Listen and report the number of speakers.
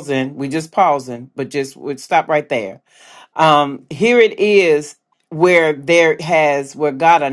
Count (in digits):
1